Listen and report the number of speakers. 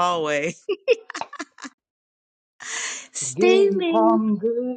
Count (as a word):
two